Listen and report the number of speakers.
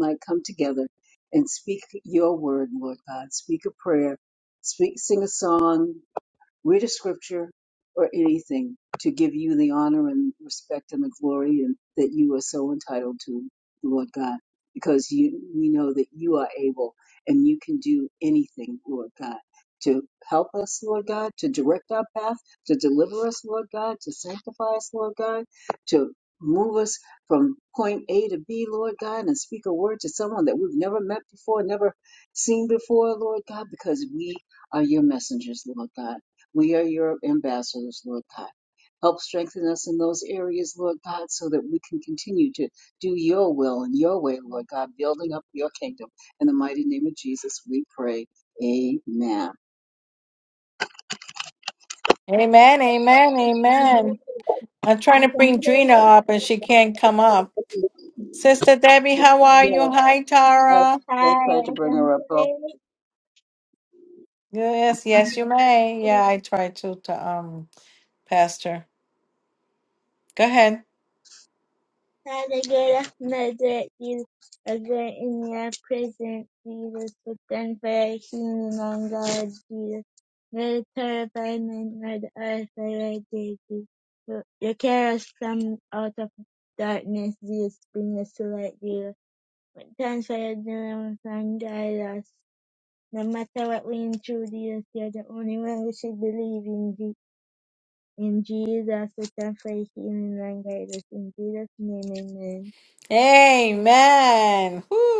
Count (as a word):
three